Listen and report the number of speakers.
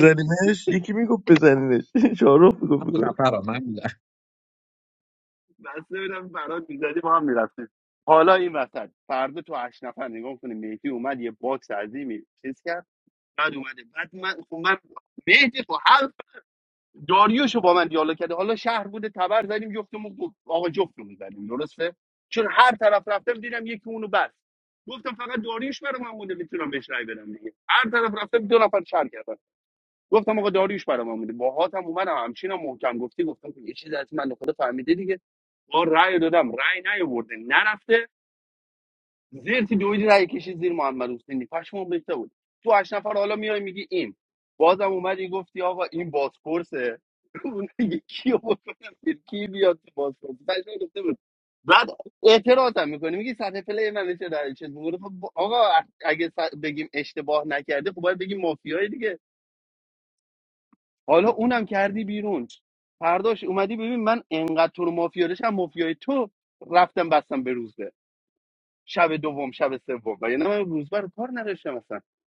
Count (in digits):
3